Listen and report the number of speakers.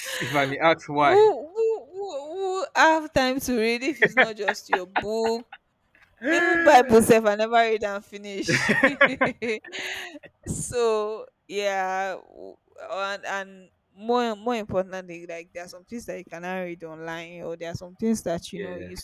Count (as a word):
two